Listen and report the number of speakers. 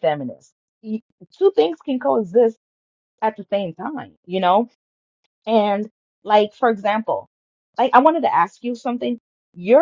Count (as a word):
one